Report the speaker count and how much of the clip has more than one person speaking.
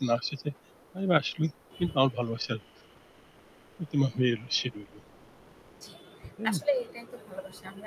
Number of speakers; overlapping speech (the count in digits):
2, about 2%